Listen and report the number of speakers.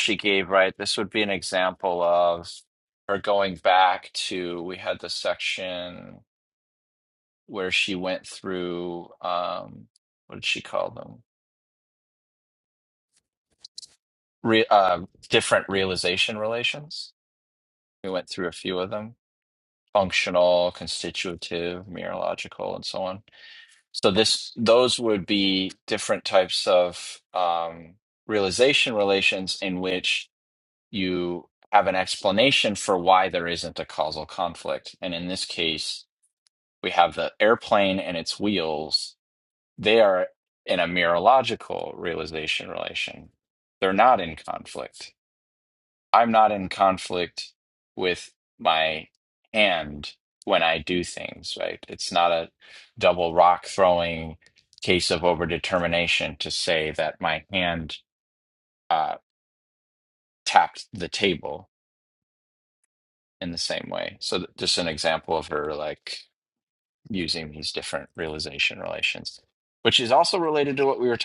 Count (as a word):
one